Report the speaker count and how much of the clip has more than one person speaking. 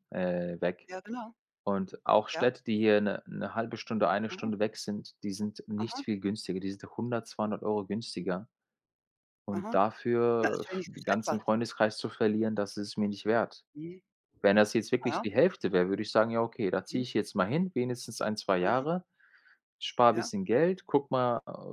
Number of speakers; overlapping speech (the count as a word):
two, about 12%